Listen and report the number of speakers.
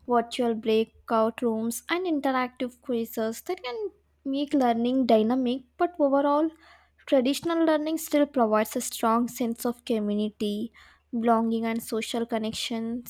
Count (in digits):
1